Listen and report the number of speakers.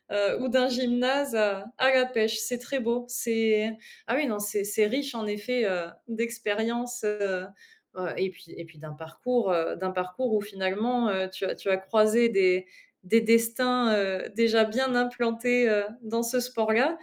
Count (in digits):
1